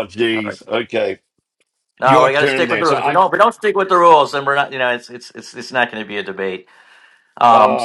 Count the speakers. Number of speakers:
two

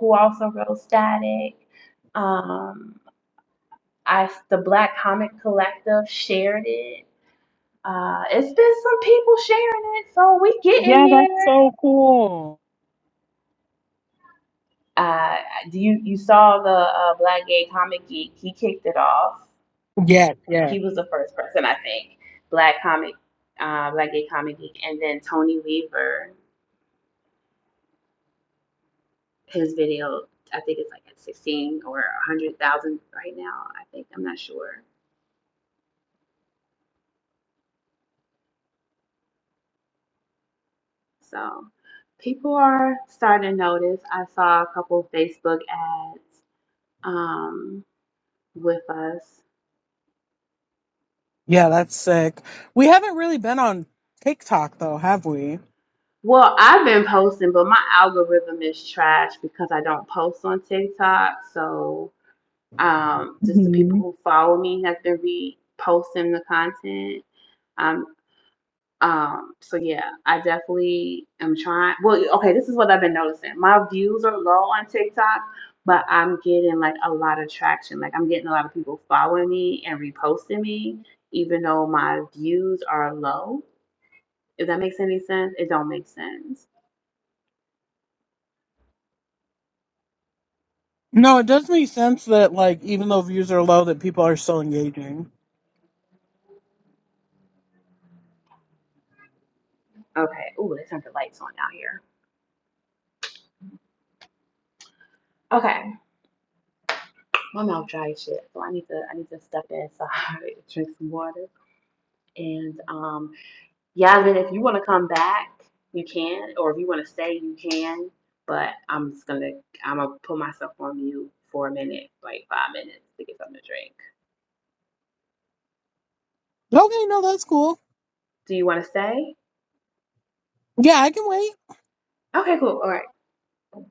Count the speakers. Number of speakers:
two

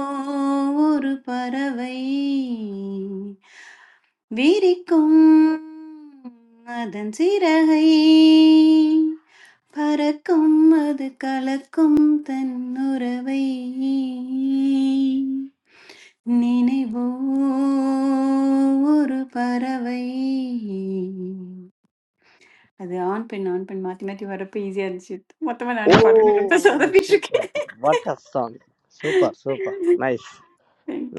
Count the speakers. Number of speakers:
two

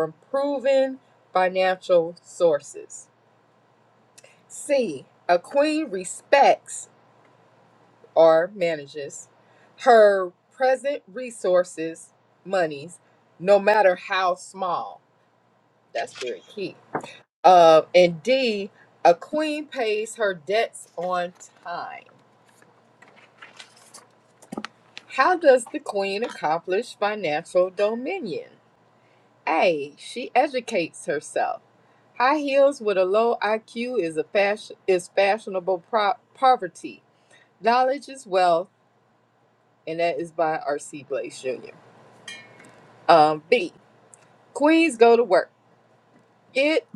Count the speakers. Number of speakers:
one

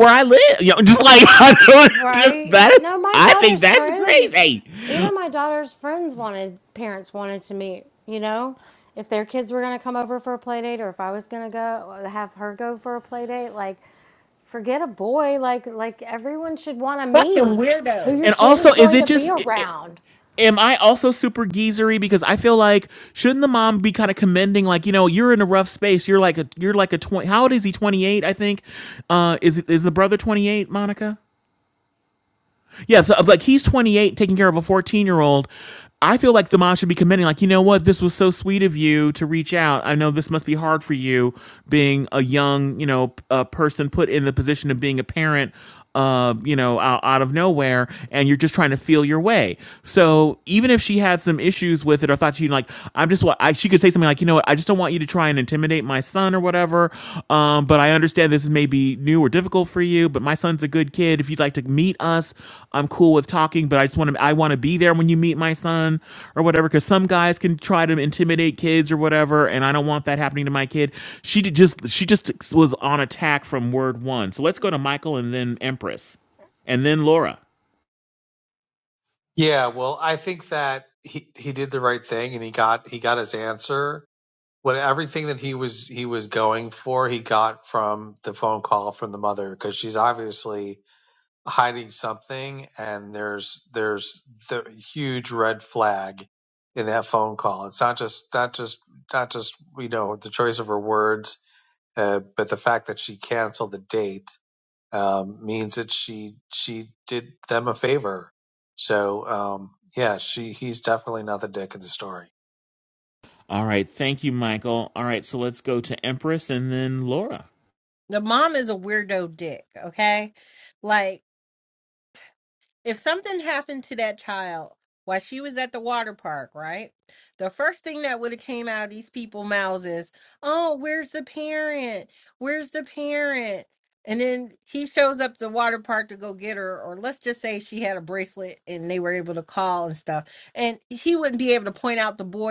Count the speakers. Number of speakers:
four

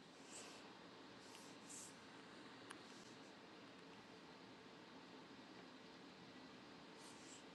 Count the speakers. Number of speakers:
zero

